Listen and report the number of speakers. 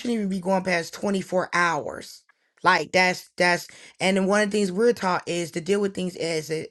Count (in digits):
1